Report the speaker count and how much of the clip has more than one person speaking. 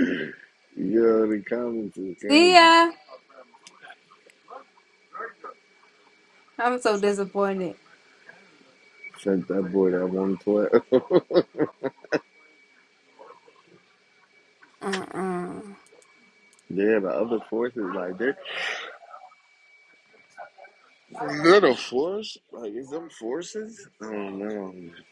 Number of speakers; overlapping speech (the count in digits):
2, about 2%